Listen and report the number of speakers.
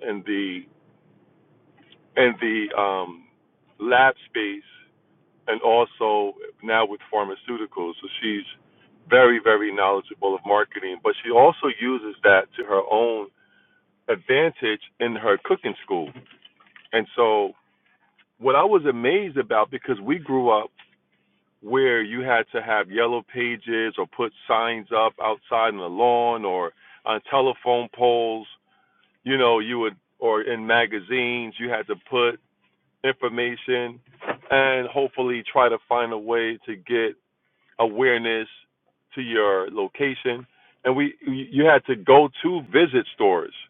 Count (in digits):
1